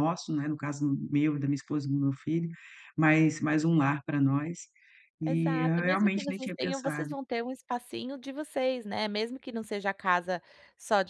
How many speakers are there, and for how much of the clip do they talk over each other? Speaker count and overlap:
2, about 17%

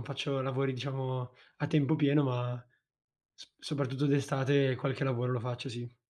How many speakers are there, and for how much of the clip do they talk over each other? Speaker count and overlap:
1, no overlap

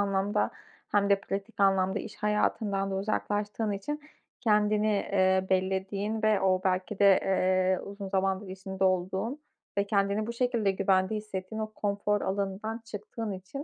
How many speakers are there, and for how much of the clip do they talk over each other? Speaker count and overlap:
1, no overlap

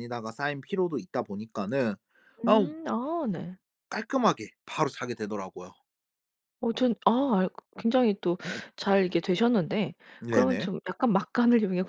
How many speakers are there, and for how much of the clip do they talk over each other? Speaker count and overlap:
2, about 5%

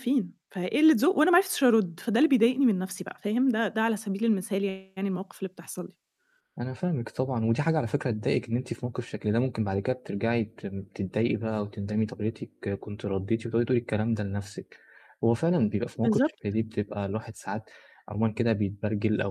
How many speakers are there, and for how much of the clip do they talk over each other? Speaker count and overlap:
2, about 1%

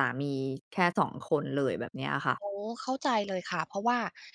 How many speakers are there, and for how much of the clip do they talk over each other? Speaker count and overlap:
2, no overlap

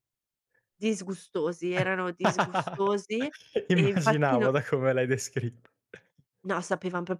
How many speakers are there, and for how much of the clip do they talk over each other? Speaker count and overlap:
2, about 11%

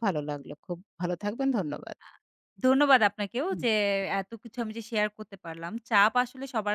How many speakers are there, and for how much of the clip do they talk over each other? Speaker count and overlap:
2, about 2%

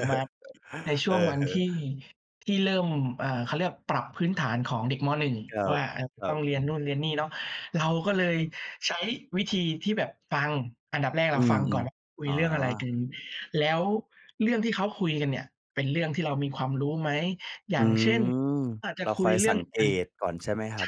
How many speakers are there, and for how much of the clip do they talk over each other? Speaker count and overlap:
2, about 15%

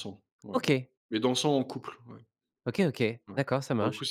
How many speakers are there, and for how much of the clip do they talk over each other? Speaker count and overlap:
2, about 9%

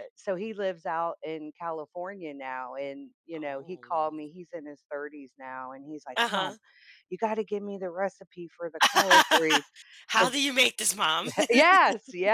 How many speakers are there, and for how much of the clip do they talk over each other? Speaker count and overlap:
2, about 7%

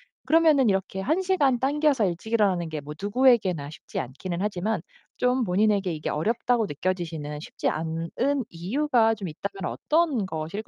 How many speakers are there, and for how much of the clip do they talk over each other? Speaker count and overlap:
1, no overlap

